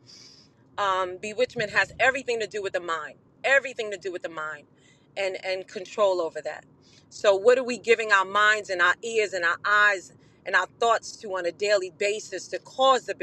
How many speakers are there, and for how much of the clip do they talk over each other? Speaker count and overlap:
1, no overlap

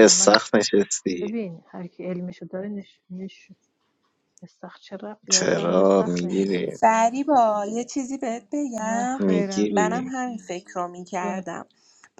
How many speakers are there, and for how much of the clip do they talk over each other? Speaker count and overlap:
3, about 27%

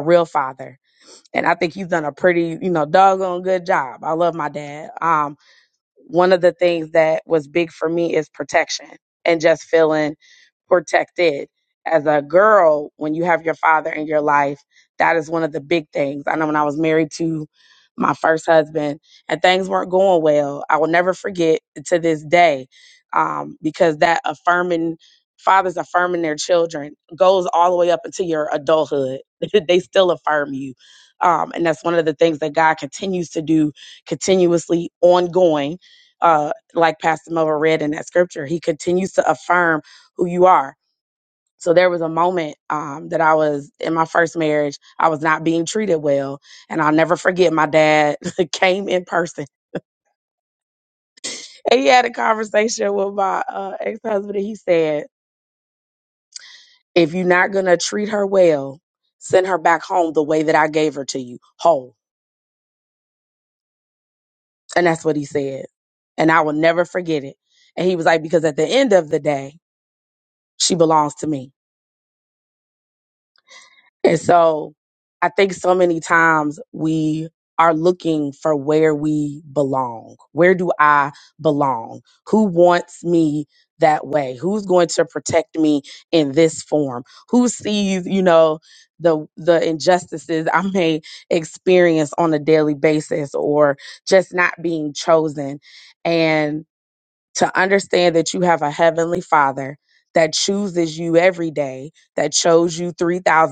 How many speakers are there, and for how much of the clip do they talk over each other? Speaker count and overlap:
1, no overlap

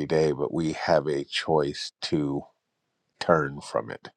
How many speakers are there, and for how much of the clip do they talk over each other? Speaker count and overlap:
1, no overlap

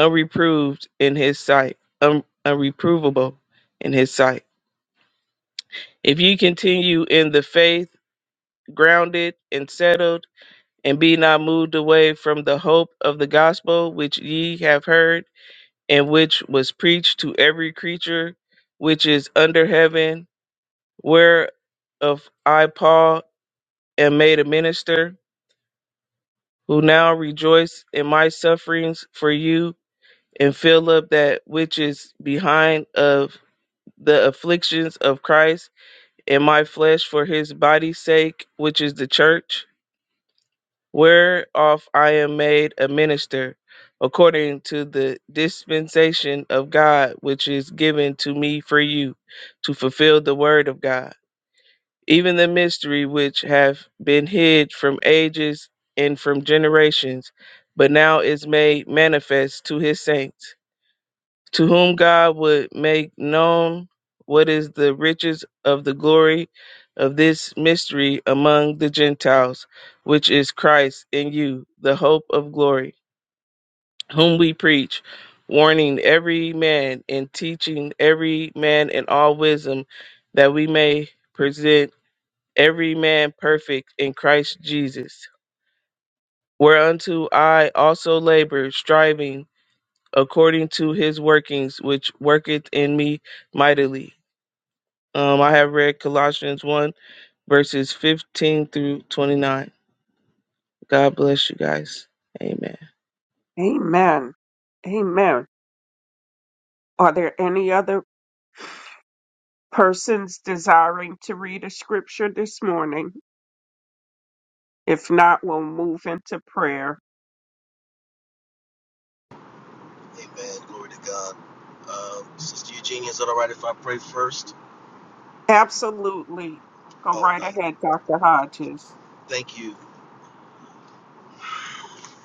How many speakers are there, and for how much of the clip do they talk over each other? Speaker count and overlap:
3, under 1%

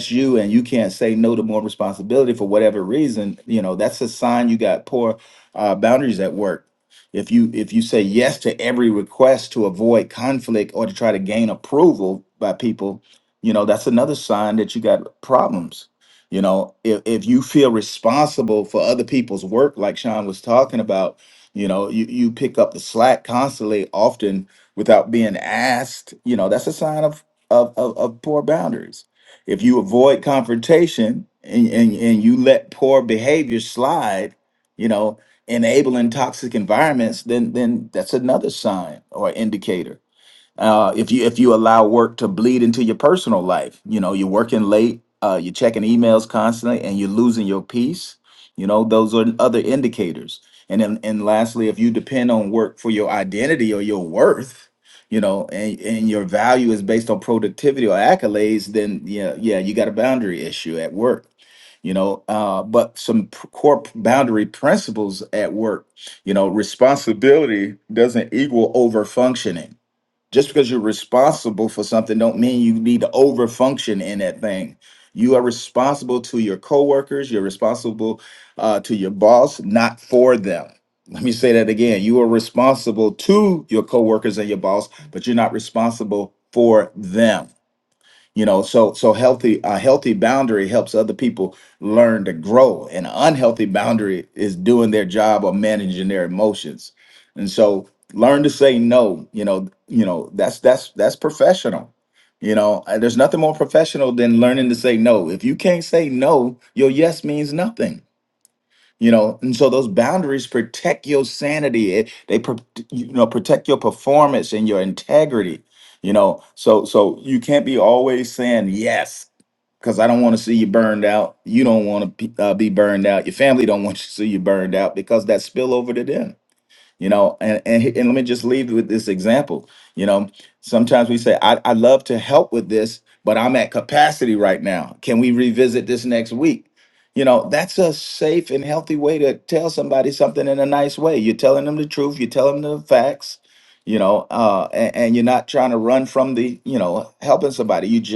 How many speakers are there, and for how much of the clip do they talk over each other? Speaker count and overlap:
1, no overlap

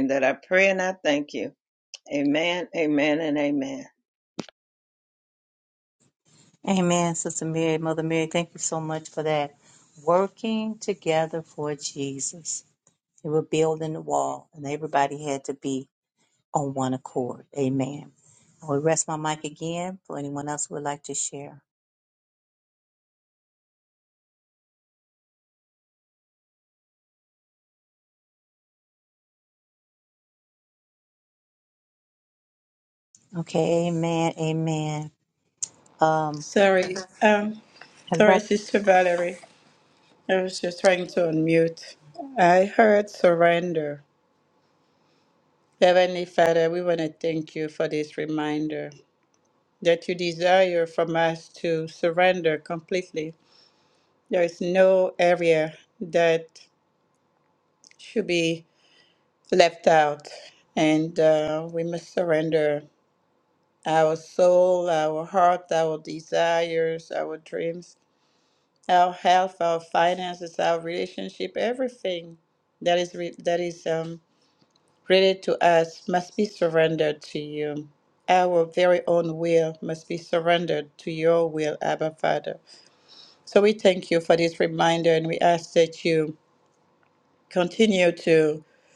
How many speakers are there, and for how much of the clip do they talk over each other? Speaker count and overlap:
3, under 1%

